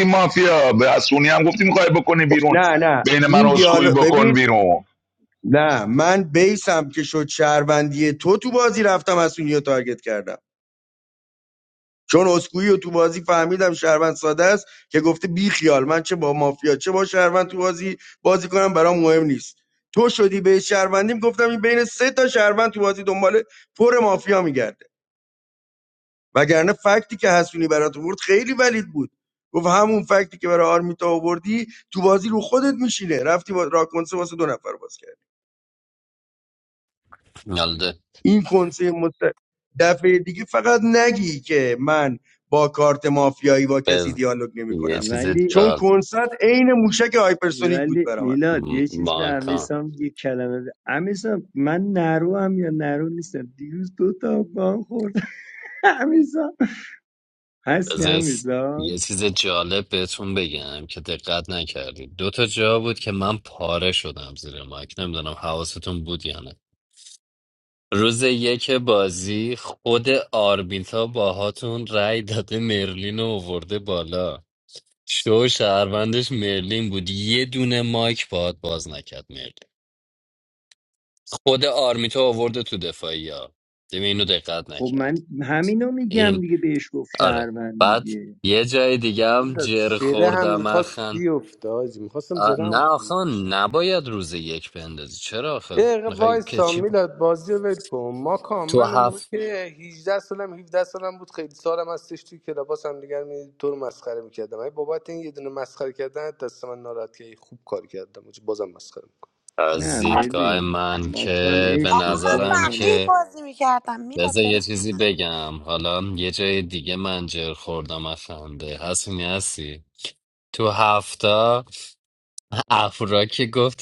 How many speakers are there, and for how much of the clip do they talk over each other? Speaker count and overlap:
six, about 11%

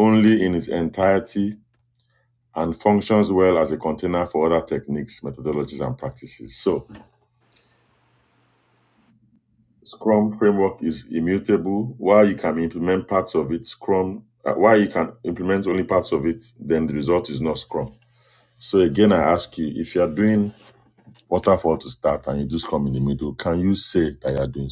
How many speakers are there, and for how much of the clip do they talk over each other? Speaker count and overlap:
one, no overlap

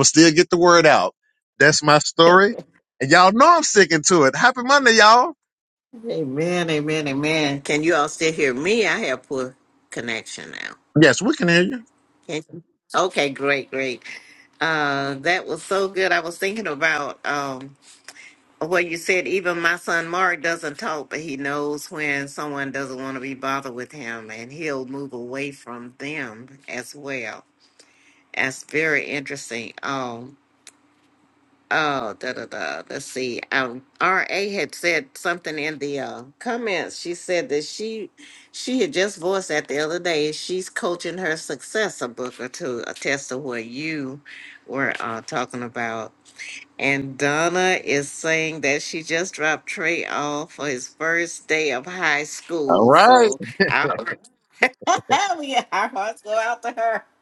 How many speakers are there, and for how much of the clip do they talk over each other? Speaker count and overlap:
two, about 1%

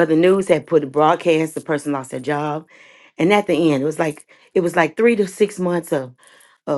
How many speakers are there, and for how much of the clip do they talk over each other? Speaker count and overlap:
one, no overlap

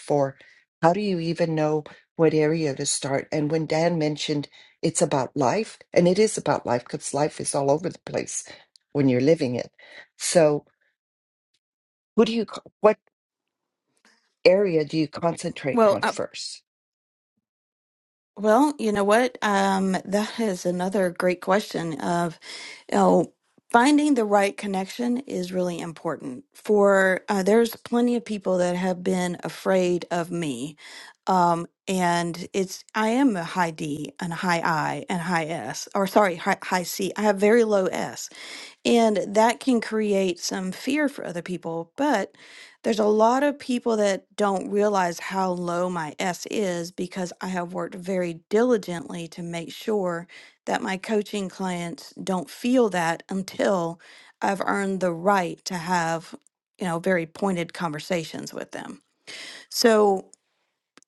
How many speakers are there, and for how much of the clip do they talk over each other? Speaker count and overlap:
two, about 1%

